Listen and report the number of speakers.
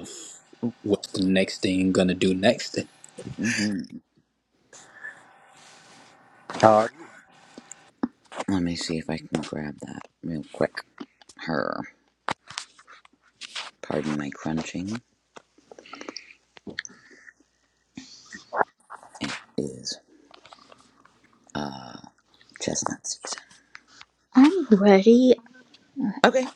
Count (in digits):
3